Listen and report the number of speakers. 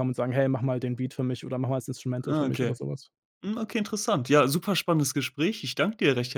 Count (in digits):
2